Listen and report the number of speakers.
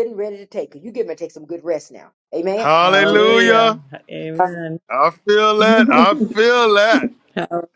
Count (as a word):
three